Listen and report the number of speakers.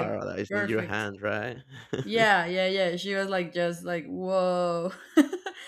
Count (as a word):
two